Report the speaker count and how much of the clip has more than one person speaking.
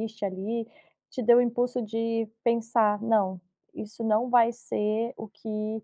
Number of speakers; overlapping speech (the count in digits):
1, no overlap